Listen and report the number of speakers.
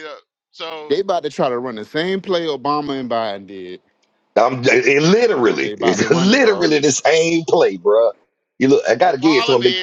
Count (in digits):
3